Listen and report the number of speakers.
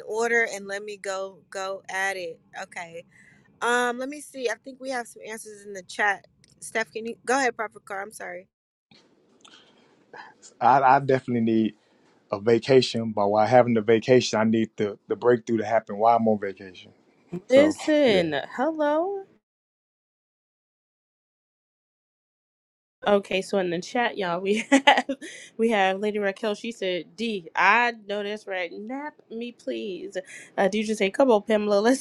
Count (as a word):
three